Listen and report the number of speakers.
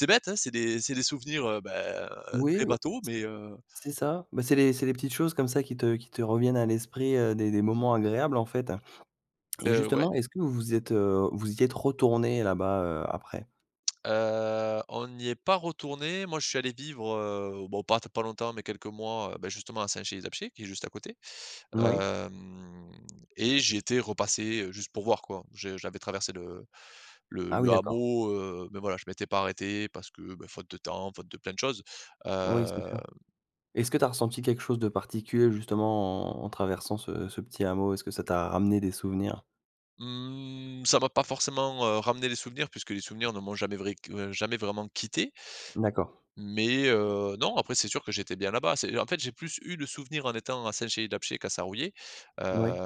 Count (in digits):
2